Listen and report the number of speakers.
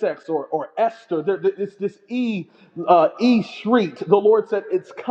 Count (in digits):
1